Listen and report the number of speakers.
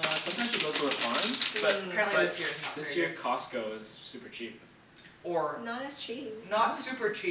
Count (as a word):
three